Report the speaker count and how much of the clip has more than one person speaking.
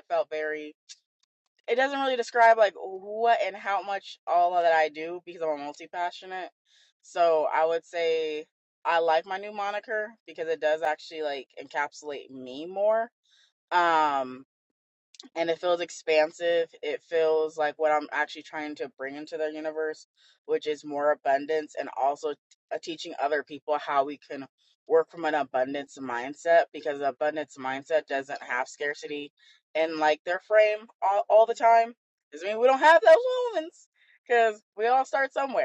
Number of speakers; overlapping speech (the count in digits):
1, no overlap